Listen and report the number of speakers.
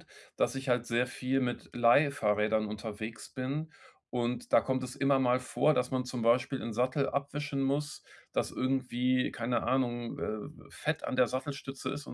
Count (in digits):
1